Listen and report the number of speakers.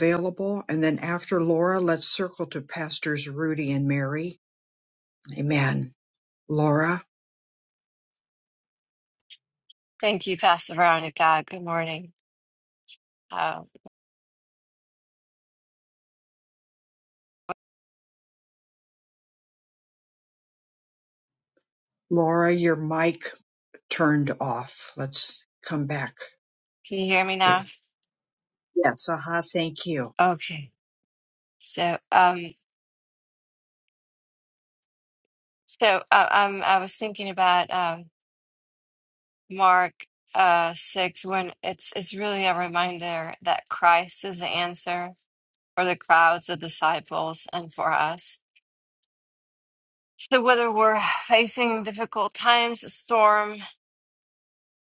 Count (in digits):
2